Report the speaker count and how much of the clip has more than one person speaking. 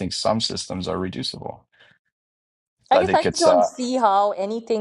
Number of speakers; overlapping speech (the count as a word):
two, about 16%